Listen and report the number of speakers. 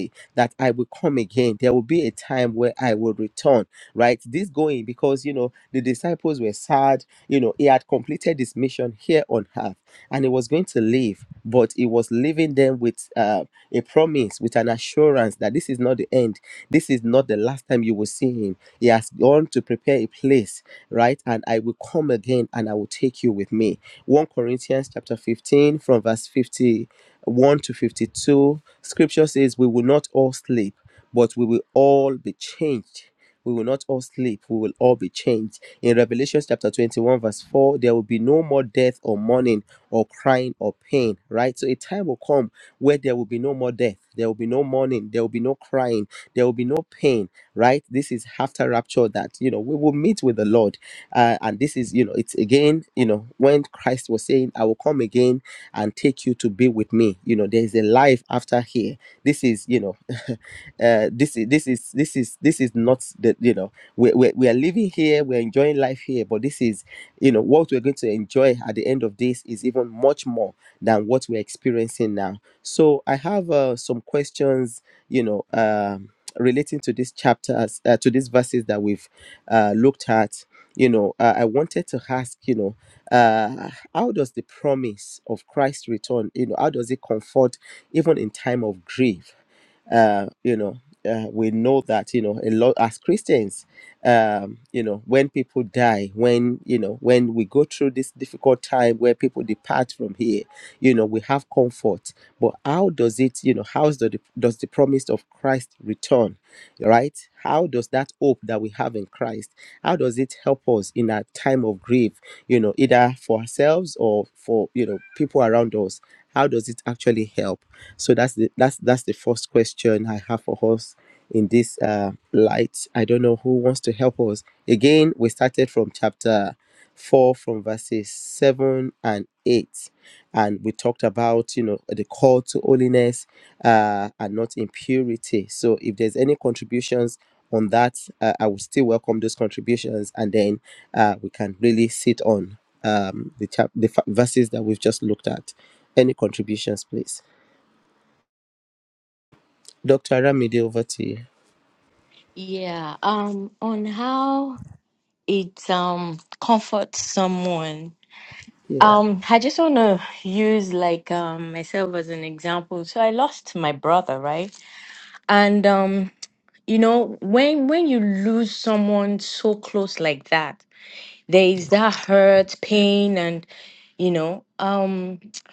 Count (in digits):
2